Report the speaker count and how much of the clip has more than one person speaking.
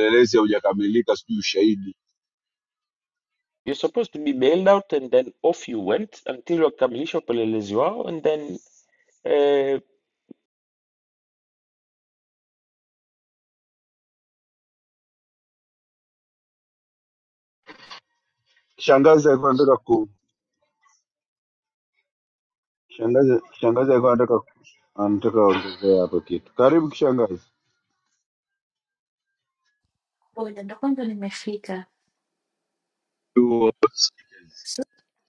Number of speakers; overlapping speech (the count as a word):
three, no overlap